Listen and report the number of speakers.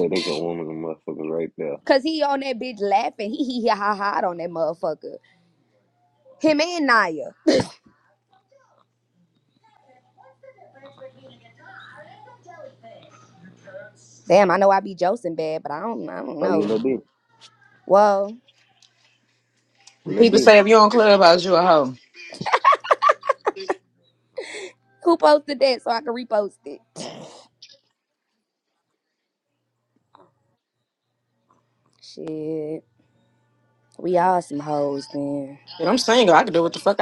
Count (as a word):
three